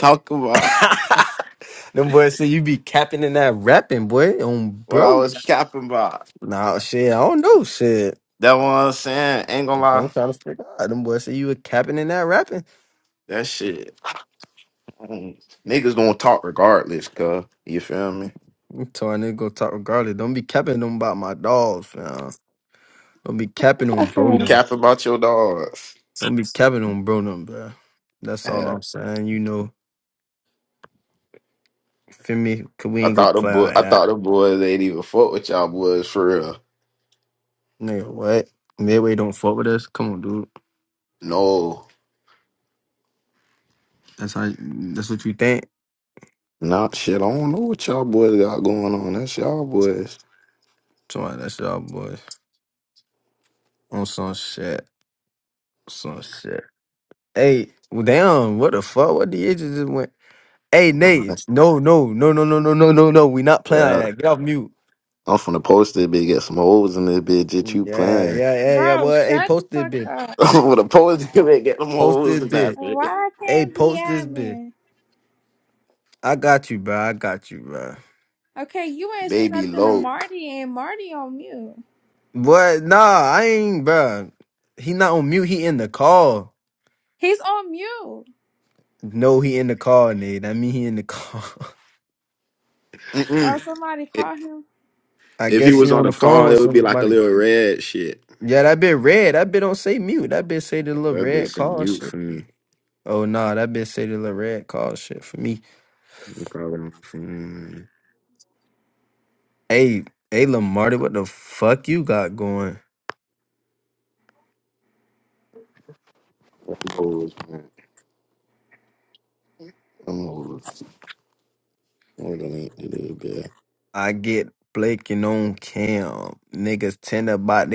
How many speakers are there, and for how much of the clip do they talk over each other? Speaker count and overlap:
3, about 9%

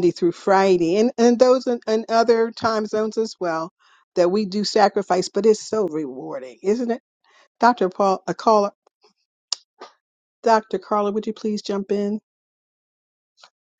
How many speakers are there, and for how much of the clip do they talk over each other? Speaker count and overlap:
1, no overlap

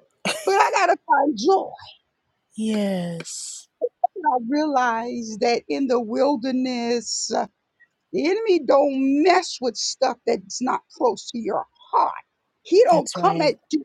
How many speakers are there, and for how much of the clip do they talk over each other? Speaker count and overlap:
2, about 5%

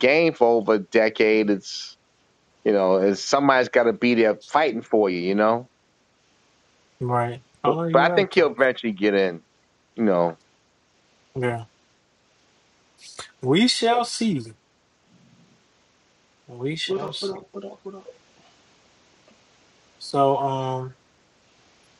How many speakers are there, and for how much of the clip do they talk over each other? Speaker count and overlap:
3, about 6%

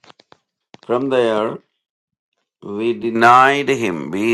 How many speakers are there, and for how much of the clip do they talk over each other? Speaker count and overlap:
1, no overlap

